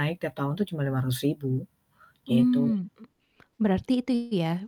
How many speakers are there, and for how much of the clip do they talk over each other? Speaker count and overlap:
two, about 9%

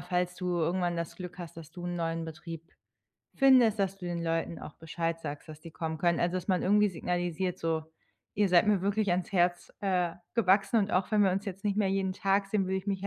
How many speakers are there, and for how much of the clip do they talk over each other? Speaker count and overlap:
one, no overlap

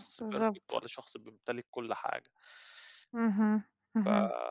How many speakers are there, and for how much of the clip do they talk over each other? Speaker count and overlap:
two, about 21%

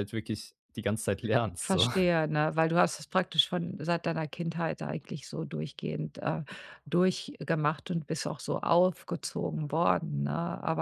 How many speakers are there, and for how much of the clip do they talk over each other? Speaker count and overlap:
two, about 2%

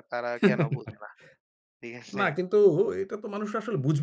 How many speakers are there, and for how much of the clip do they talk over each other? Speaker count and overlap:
two, about 3%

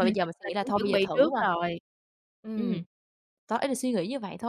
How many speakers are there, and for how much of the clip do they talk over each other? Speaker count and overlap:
two, about 27%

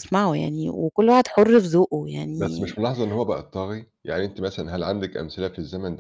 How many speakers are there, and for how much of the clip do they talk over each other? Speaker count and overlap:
two, about 6%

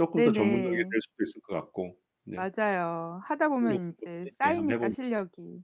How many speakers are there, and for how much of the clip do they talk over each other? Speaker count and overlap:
two, about 39%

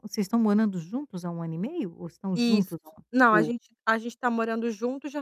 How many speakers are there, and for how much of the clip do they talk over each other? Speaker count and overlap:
two, about 9%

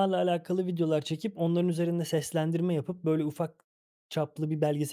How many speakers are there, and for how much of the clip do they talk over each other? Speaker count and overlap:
one, no overlap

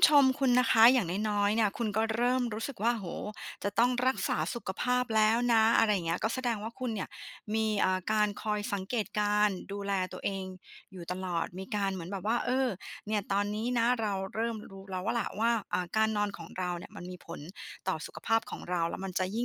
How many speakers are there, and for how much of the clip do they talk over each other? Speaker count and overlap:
one, no overlap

